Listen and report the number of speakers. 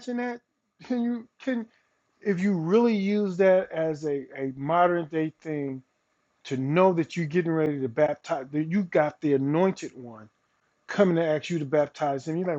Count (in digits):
1